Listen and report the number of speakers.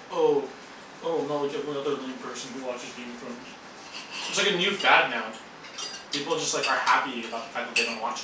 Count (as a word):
one